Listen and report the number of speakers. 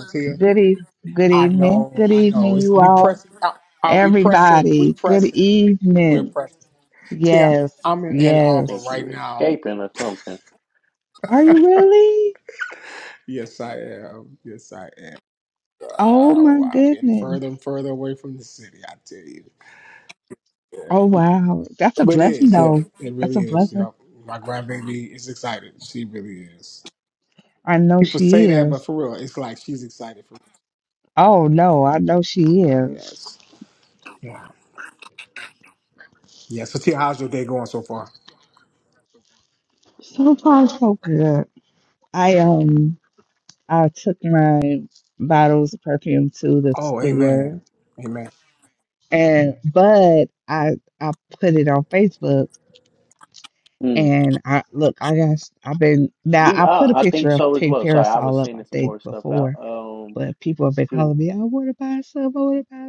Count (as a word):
three